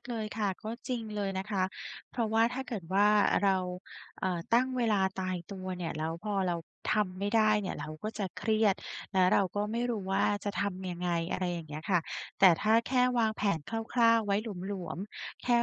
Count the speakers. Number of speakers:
1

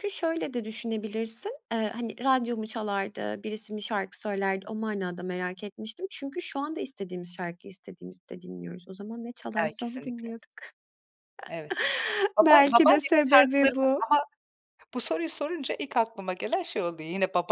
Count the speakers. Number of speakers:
2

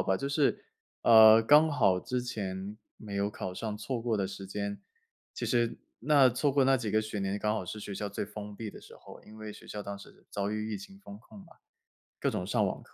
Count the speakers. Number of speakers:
1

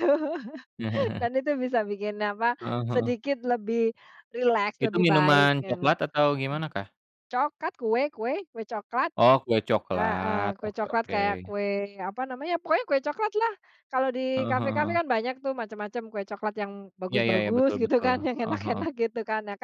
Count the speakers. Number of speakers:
2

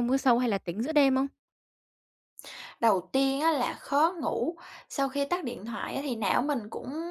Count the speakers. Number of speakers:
2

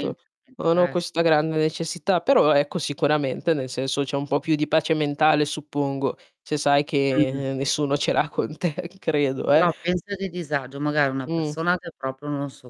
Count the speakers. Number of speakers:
2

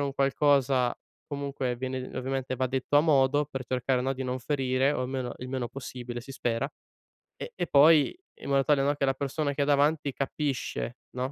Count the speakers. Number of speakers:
1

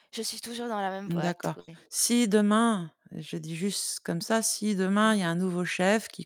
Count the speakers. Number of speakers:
2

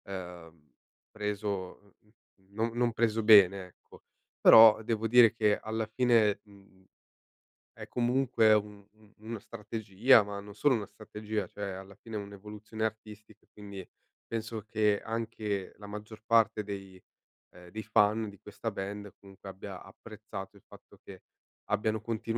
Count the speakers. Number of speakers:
1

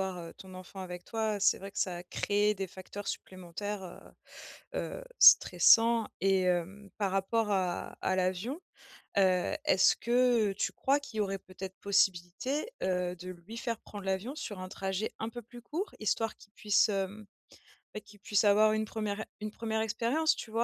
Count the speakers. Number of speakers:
1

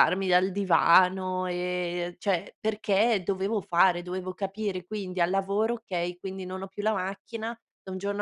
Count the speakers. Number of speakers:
1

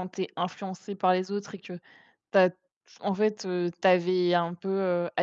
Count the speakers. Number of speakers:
1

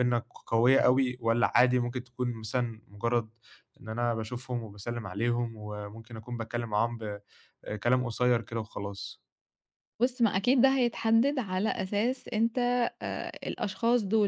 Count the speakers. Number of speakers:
2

